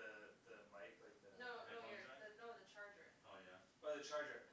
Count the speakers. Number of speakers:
3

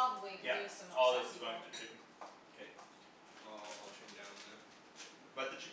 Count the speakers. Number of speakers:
3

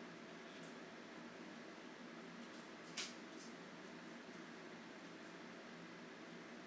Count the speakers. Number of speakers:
0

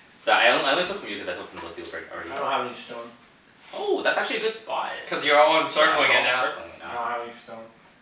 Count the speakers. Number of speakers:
3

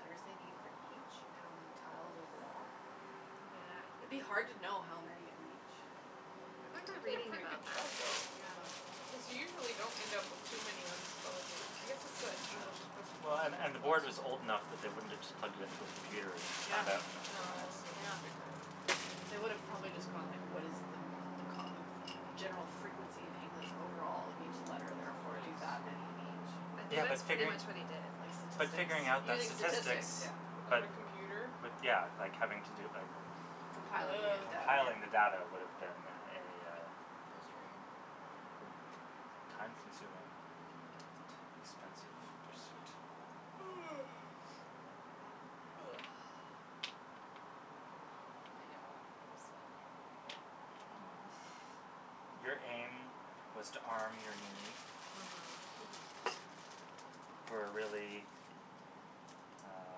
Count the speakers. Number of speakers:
4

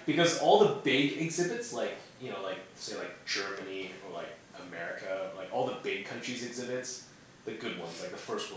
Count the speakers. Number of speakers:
1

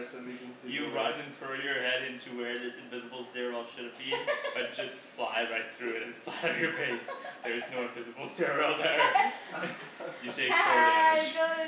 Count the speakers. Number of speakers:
3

